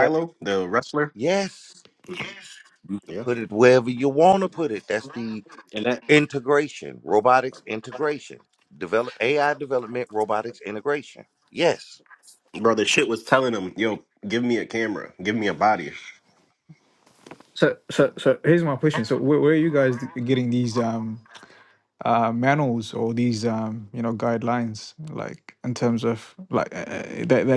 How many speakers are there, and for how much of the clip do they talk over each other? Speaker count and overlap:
three, about 1%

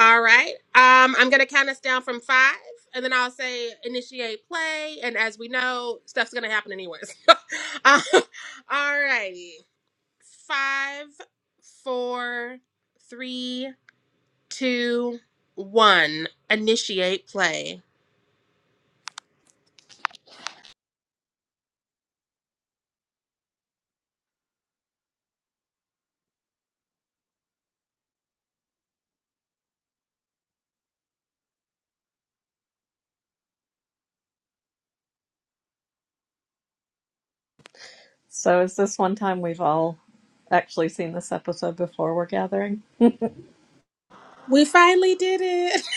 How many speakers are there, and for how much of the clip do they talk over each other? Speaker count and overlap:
two, no overlap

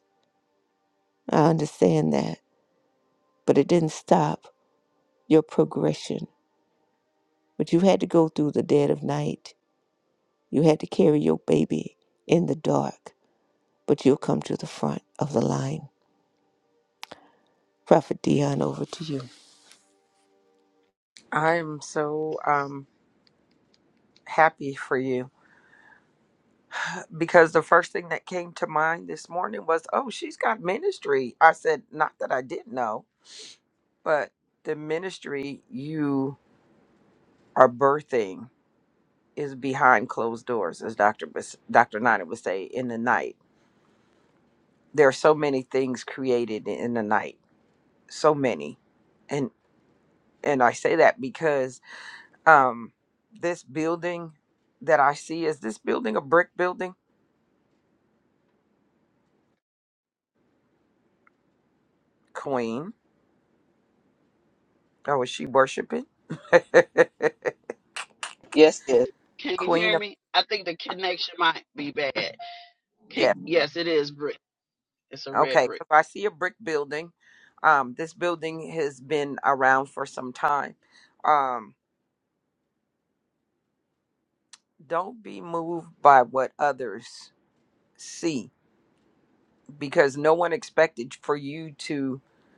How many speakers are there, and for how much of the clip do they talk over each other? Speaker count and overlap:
three, about 1%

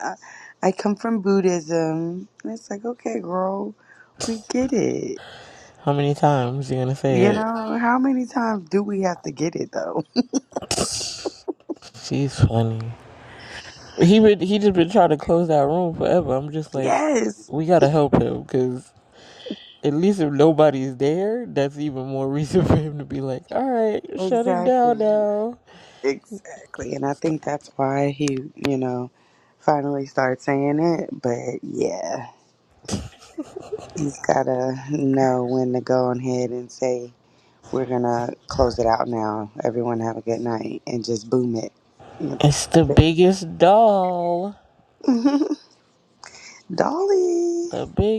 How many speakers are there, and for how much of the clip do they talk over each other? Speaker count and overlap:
two, about 3%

